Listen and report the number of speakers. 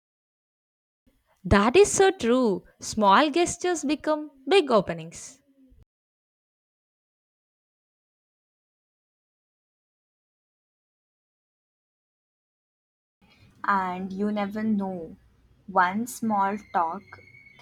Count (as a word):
two